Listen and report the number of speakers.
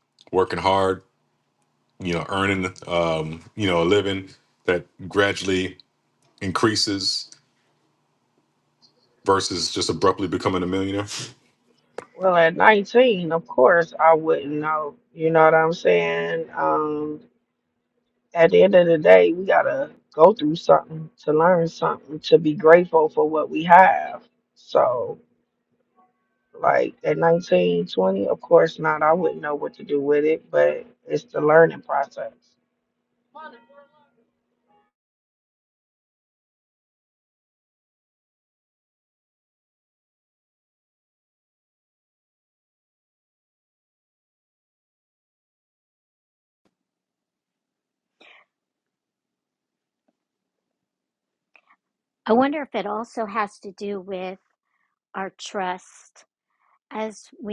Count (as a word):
three